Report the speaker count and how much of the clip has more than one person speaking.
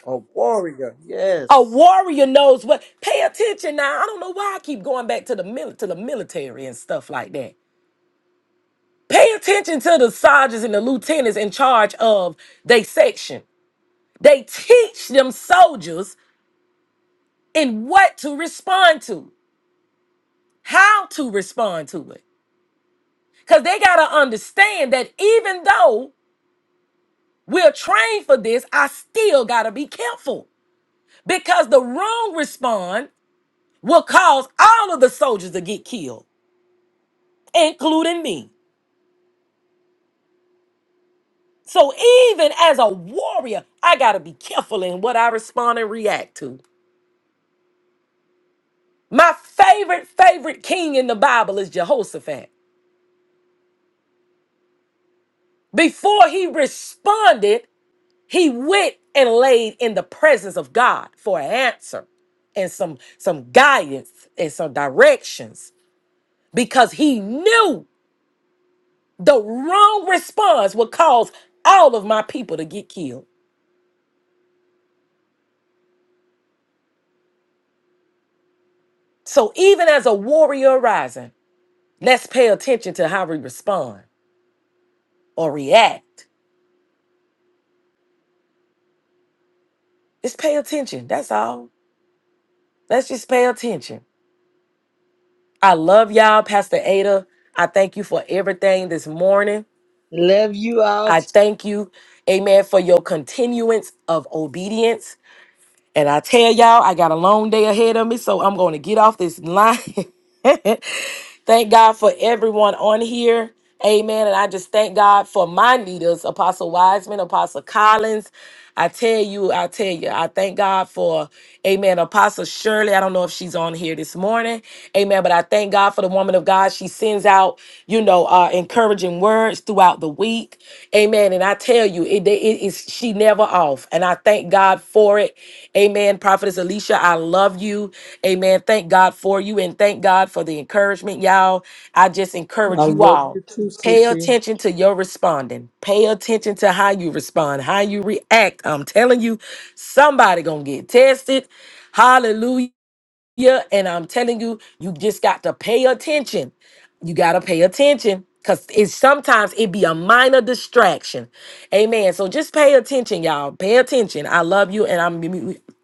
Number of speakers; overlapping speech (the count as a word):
three, about 1%